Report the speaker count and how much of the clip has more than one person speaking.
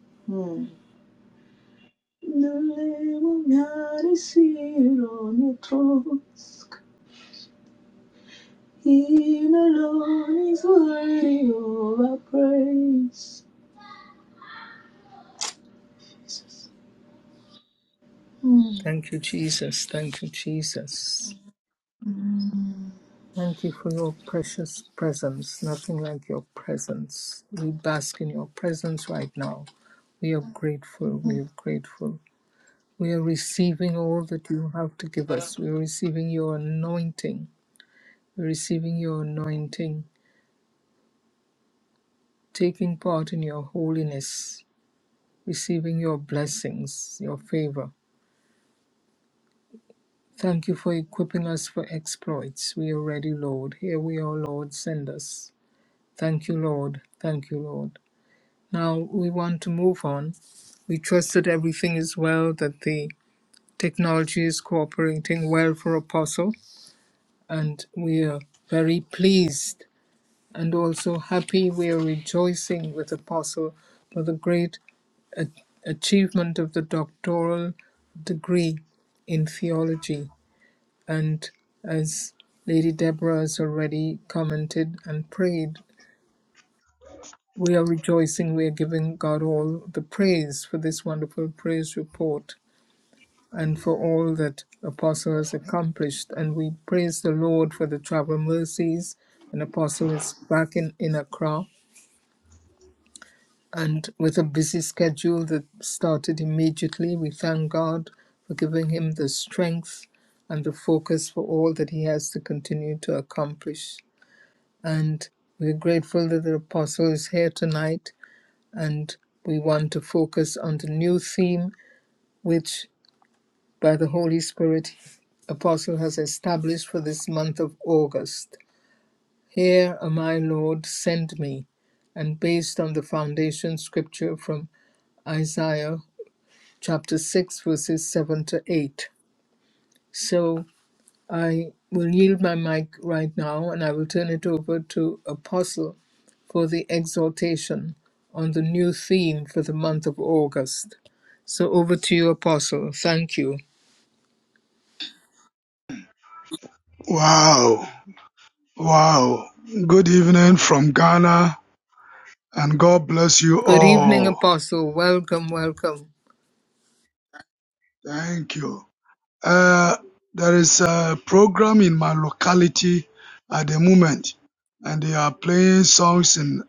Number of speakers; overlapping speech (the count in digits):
3, under 1%